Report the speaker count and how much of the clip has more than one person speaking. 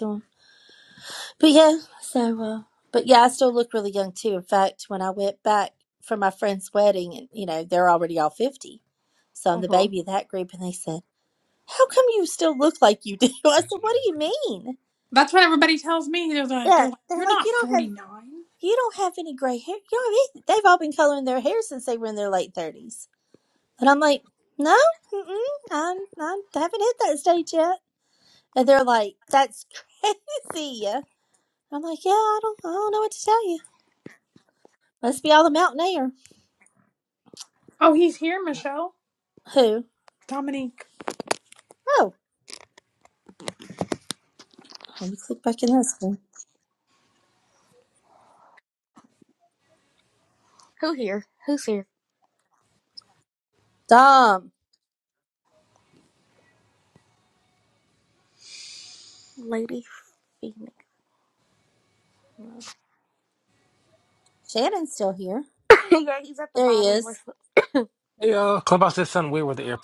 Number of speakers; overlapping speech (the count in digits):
4, about 3%